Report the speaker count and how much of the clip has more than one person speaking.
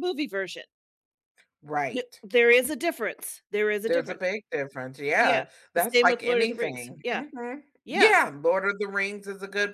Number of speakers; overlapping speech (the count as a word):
two, about 28%